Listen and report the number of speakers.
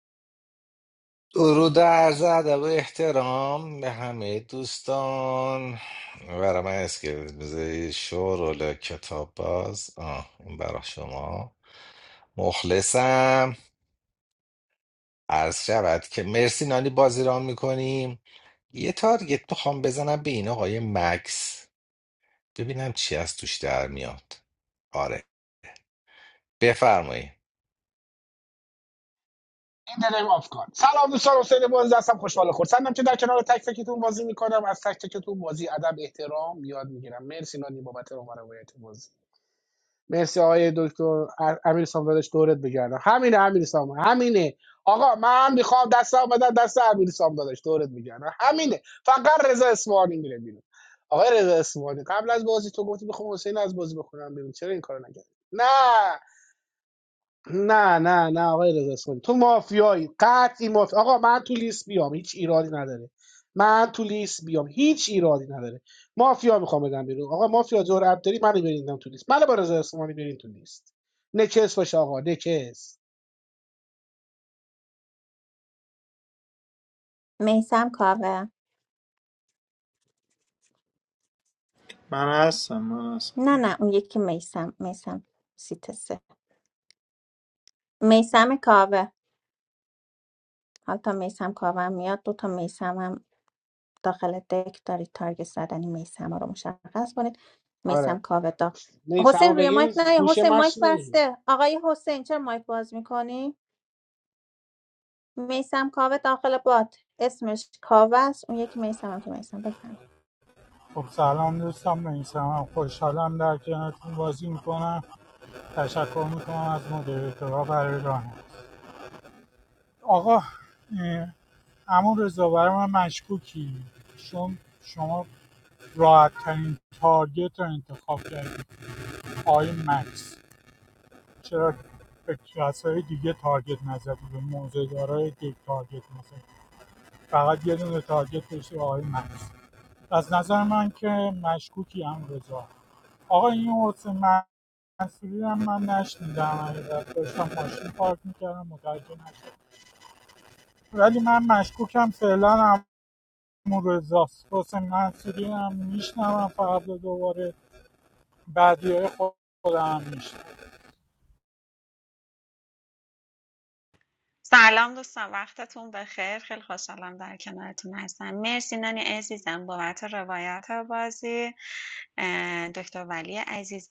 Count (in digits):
6